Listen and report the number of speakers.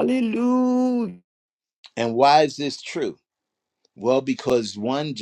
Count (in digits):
2